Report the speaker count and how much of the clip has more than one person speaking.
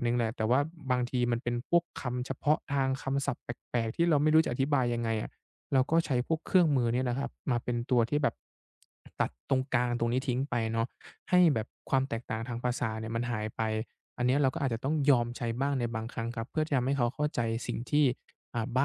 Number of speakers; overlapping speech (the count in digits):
1, no overlap